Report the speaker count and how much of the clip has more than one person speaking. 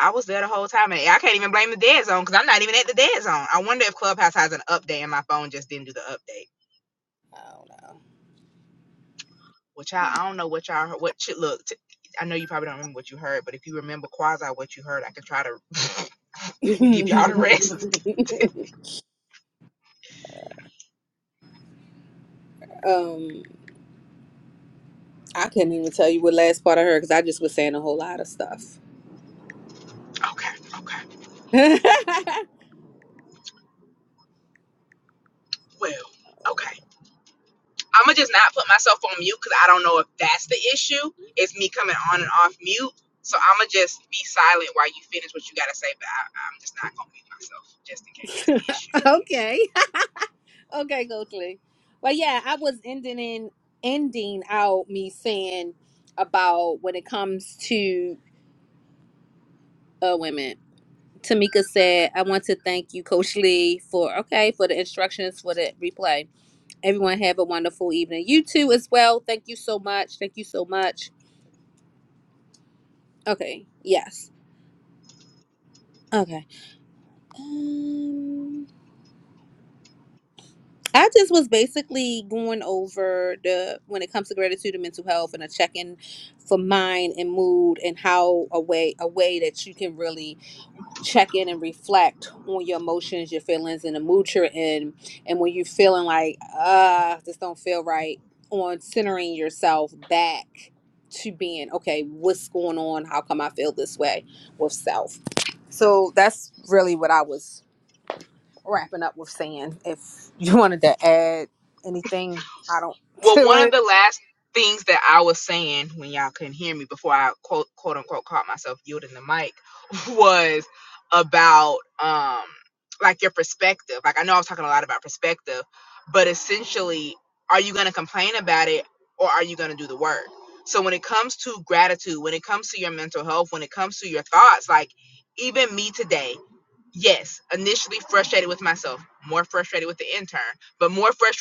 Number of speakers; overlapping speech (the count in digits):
2, about 1%